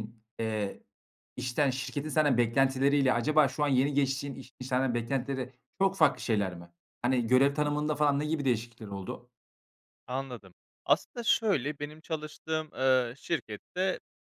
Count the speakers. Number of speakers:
two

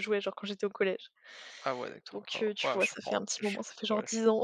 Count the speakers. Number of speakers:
two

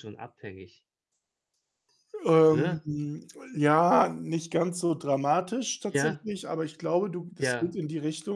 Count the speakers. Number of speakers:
two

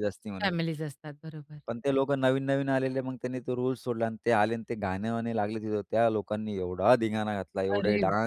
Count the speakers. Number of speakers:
two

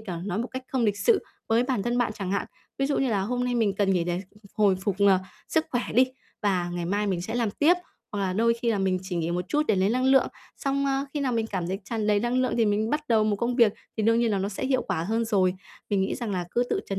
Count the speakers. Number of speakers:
one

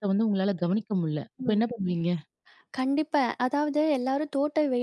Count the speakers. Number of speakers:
two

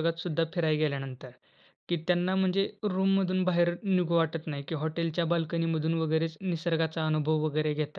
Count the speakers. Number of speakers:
one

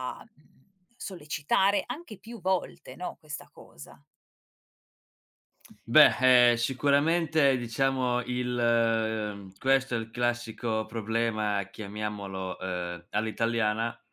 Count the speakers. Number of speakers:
two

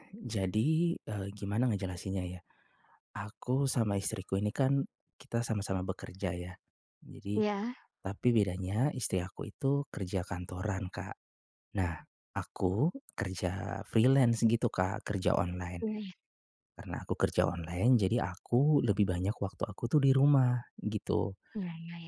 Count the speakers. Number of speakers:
two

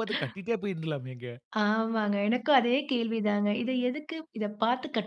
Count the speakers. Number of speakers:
two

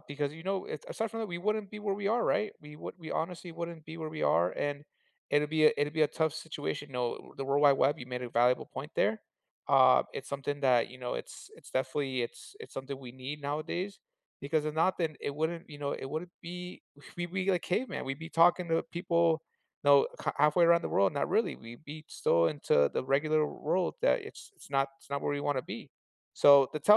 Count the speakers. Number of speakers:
one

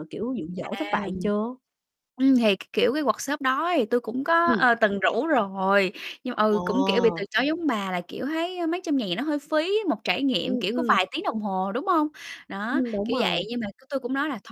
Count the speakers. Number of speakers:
two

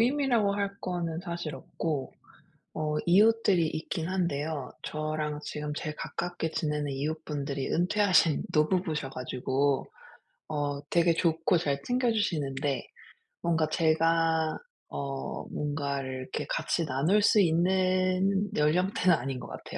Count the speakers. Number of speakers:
one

